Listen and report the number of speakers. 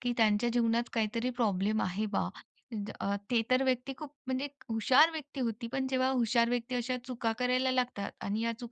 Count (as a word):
one